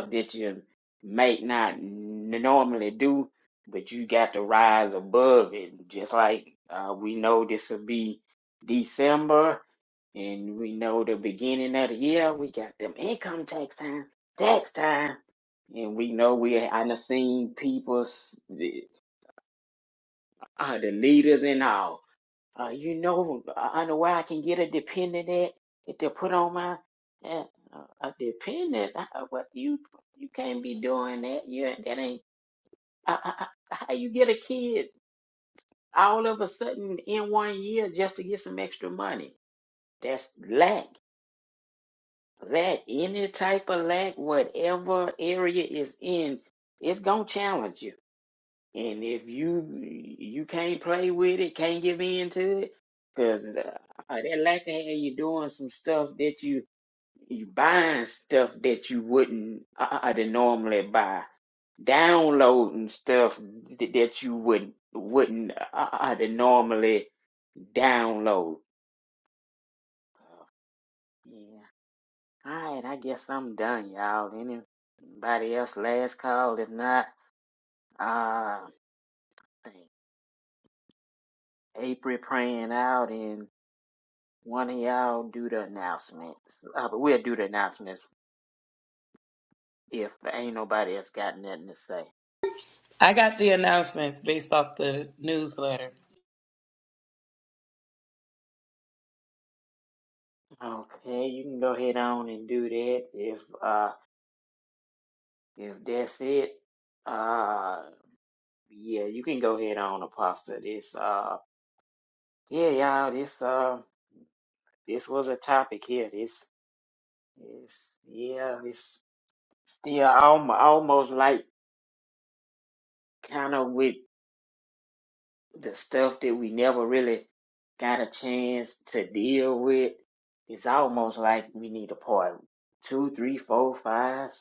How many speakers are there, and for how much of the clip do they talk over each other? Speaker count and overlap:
2, no overlap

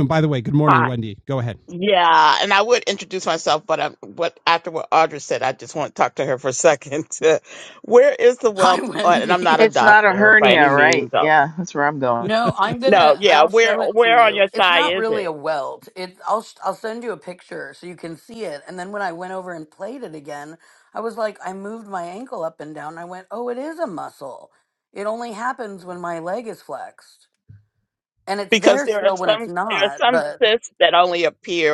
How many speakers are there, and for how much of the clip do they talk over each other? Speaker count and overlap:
4, about 23%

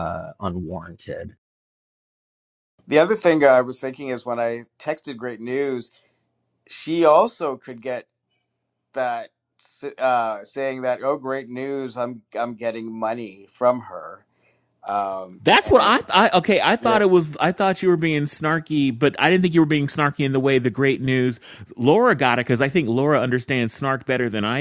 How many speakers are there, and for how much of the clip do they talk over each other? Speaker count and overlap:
3, about 3%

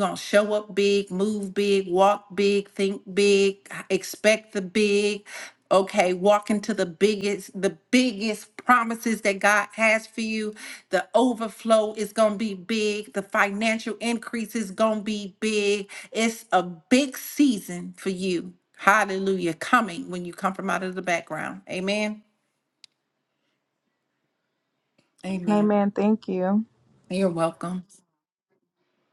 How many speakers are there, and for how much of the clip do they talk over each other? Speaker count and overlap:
2, about 1%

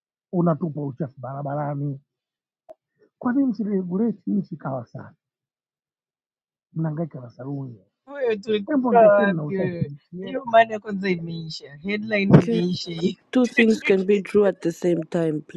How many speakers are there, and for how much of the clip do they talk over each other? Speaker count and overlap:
3, about 10%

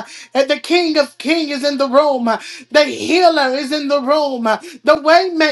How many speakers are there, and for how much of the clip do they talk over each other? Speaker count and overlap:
1, no overlap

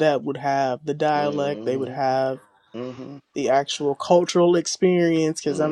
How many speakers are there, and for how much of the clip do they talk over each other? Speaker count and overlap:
2, about 19%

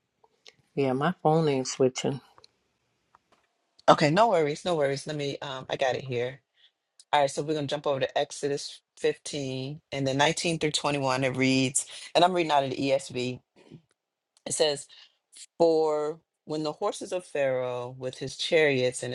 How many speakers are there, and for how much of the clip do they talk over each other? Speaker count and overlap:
2, no overlap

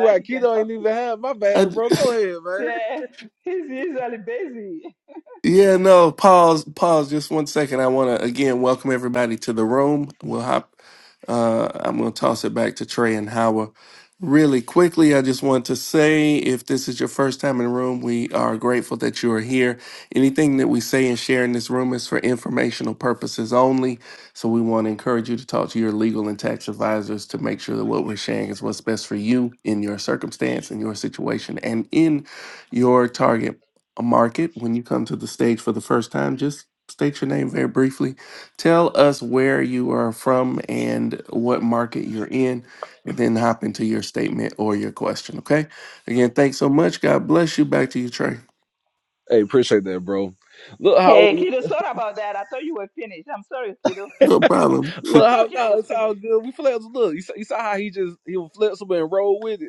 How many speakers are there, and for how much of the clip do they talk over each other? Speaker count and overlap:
3, about 4%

